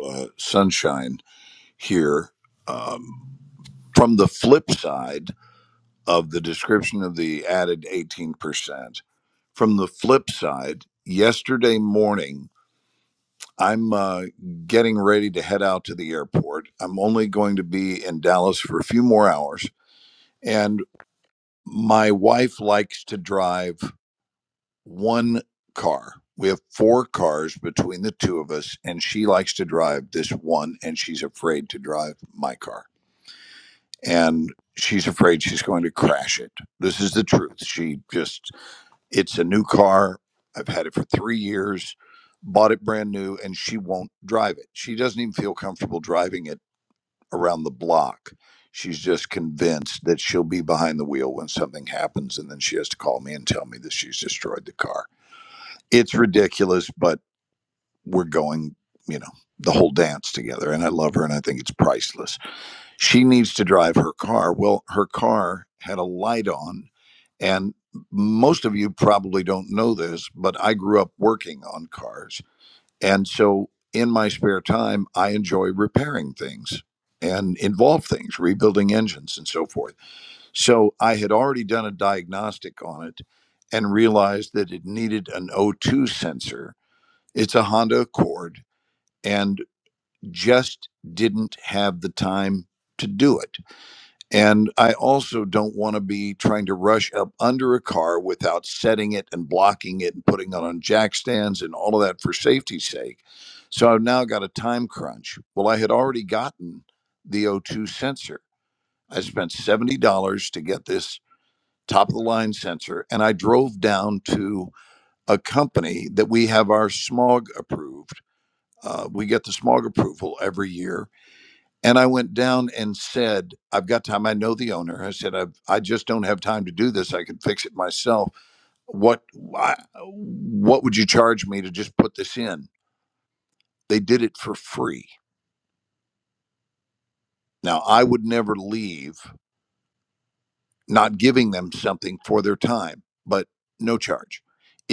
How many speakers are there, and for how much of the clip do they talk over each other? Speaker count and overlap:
one, no overlap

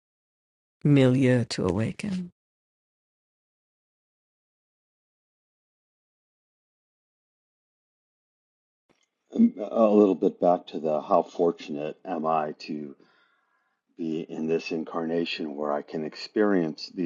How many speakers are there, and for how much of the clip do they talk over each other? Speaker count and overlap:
two, no overlap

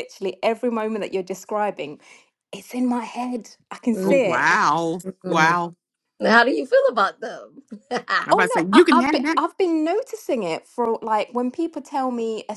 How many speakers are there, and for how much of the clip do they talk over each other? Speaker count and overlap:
three, about 17%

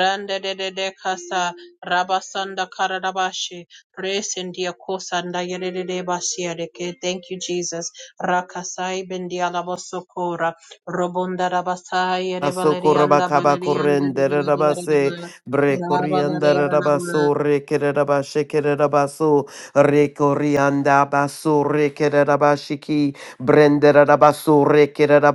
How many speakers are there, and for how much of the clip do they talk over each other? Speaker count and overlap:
two, about 15%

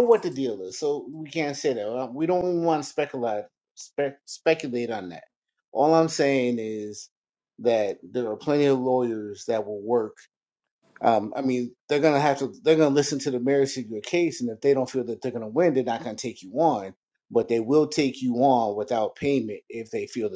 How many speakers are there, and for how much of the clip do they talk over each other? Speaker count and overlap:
one, no overlap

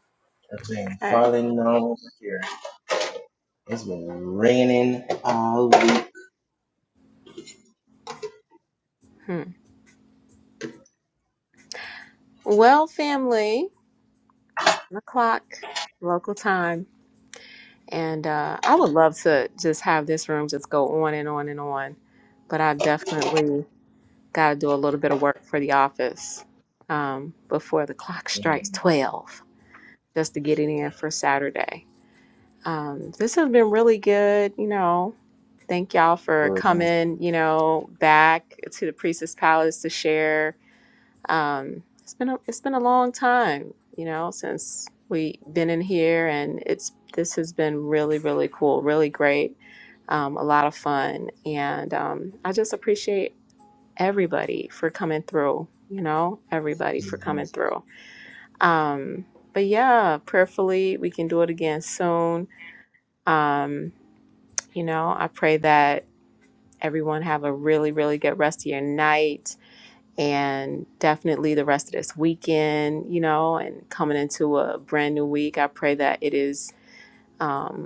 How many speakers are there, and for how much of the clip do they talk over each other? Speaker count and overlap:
two, about 1%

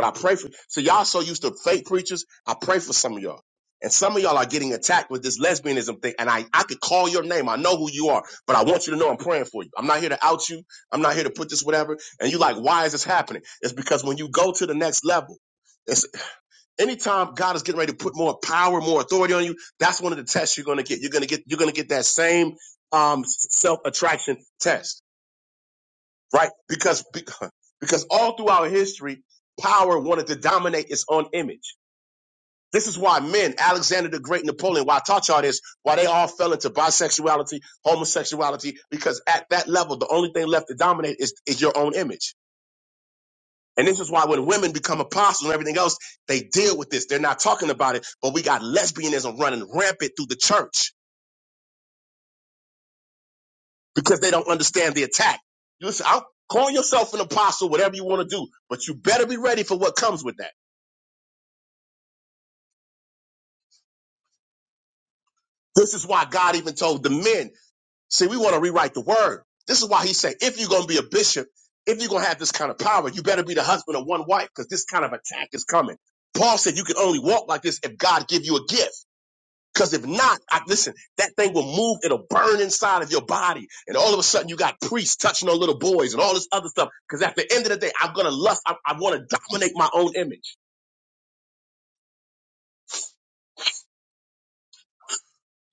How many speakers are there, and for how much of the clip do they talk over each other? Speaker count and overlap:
one, no overlap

